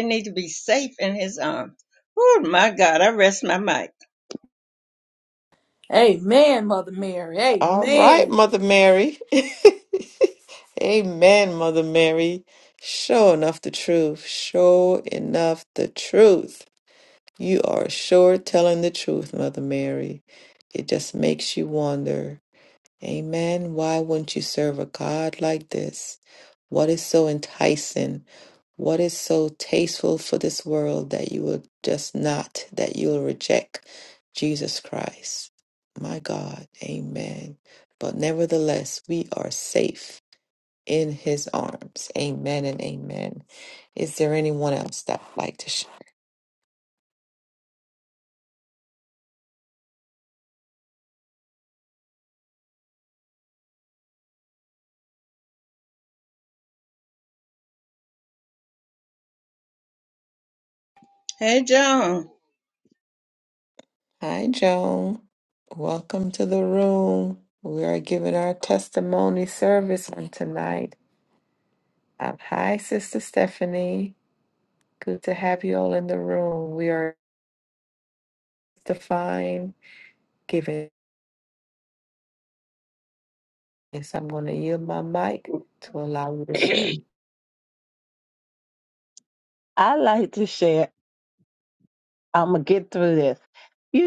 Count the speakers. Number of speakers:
four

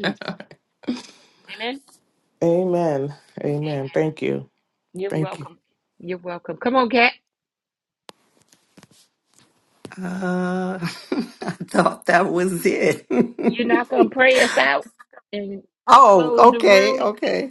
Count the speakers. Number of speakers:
three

